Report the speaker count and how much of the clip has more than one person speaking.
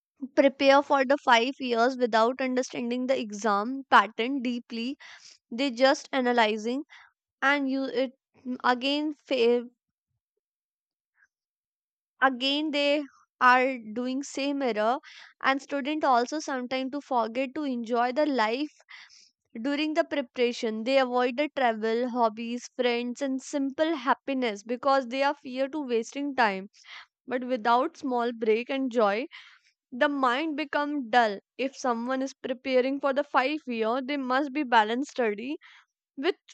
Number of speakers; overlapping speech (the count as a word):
one, no overlap